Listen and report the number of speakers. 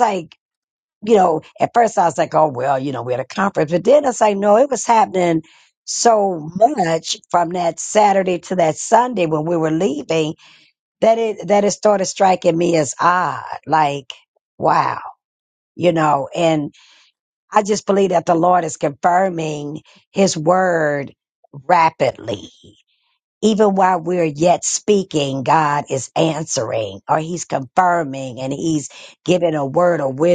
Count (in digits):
1